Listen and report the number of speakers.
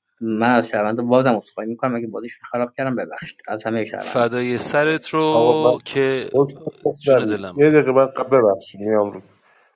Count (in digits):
3